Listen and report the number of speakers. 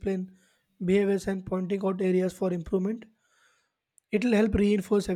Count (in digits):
1